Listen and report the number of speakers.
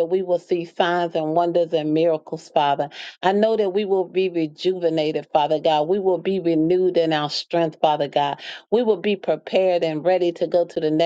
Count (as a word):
one